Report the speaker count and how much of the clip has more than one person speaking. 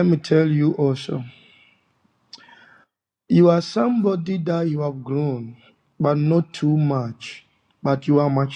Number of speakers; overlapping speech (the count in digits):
1, no overlap